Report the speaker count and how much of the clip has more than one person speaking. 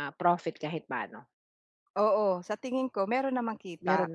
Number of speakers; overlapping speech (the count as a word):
two, about 8%